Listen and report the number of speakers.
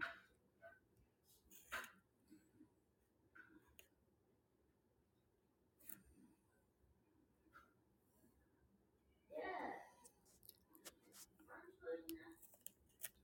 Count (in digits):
0